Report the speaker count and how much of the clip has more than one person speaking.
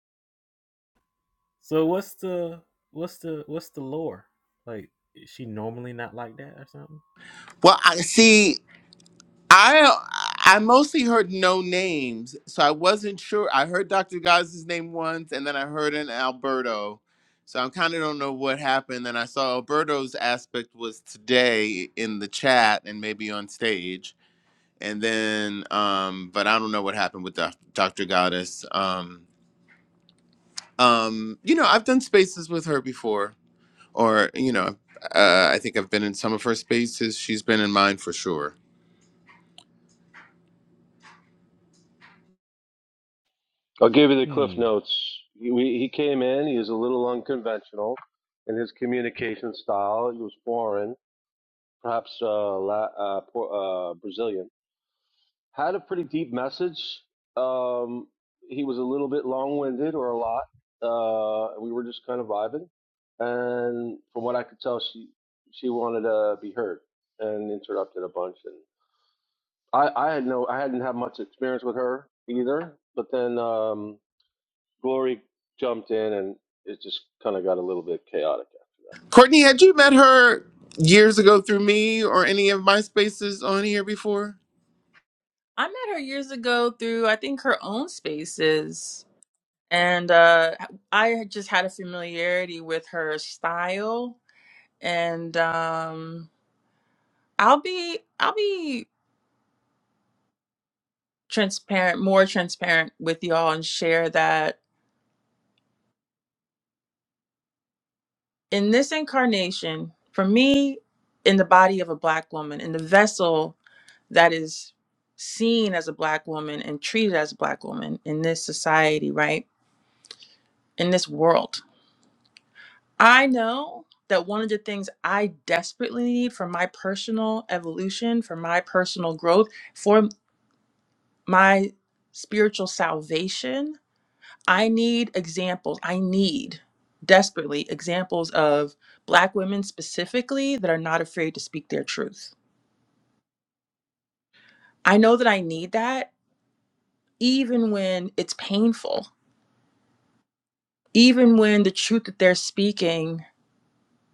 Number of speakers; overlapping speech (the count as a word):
four, under 1%